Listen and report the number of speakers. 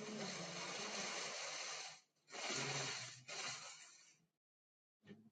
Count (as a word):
zero